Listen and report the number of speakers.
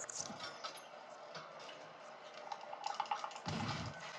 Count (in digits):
0